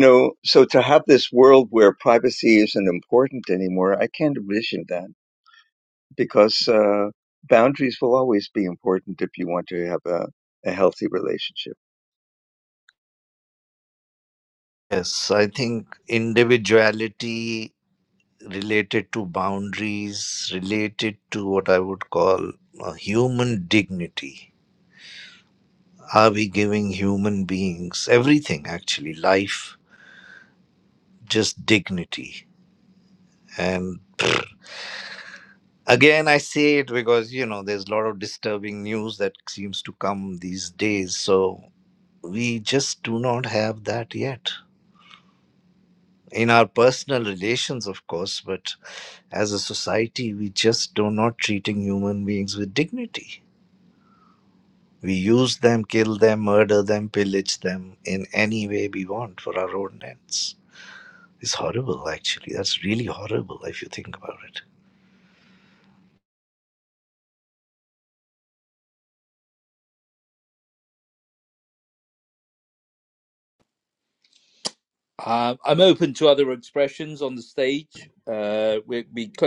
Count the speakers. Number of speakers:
three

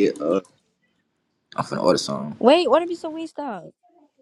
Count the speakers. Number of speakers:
two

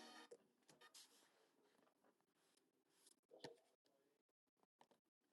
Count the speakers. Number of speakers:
zero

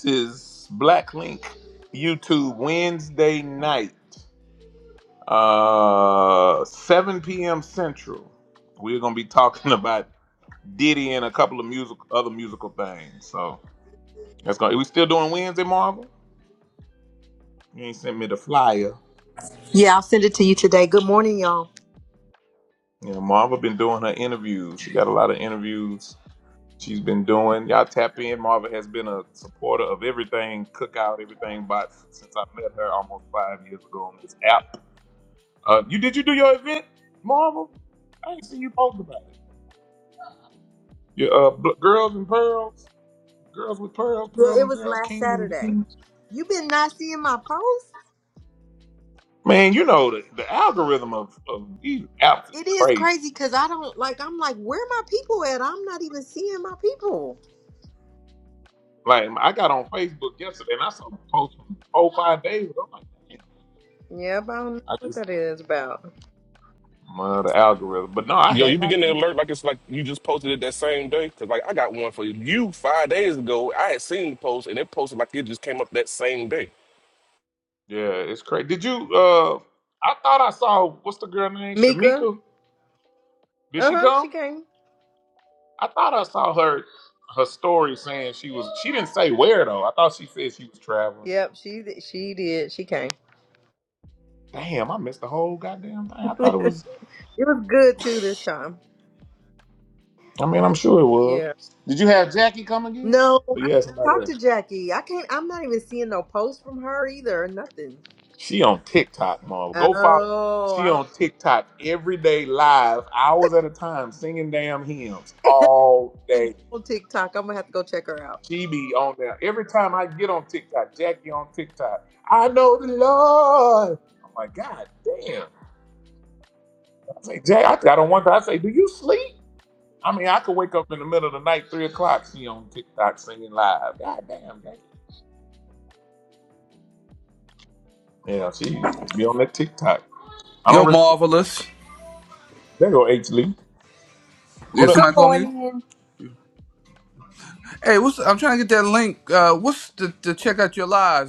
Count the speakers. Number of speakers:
four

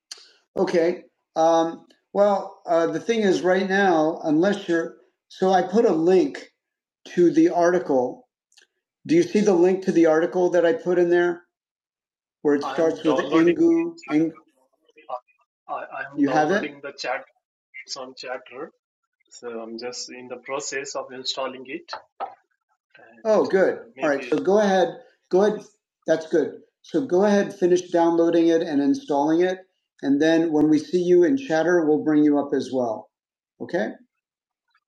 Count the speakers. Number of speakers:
two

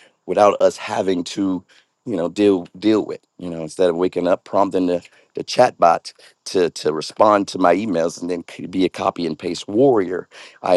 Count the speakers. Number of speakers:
one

